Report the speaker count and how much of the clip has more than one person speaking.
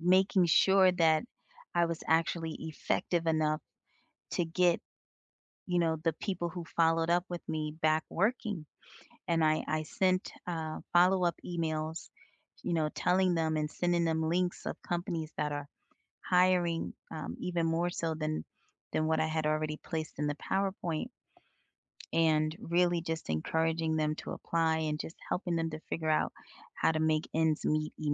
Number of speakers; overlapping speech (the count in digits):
1, no overlap